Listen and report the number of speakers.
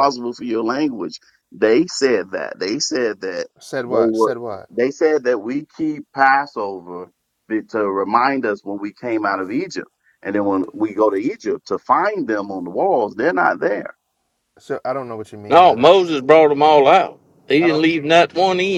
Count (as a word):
three